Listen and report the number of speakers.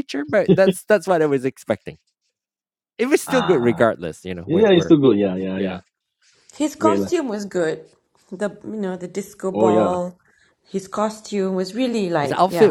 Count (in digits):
3